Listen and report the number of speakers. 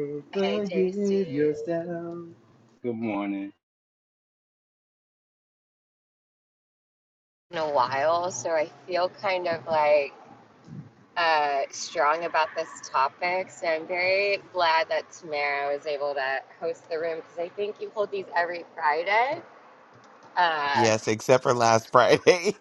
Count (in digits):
3